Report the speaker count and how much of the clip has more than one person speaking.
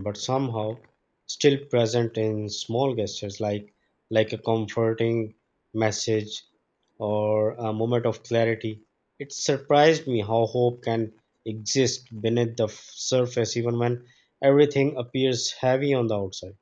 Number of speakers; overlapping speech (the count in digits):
1, no overlap